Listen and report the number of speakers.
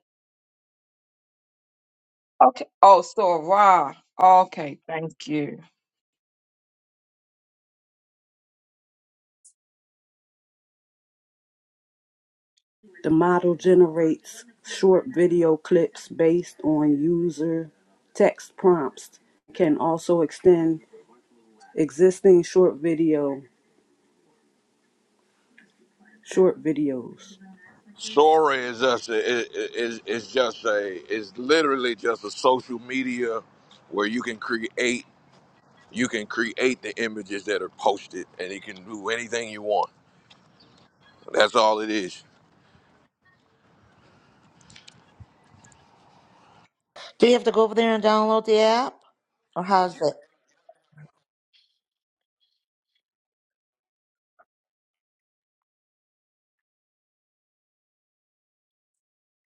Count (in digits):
4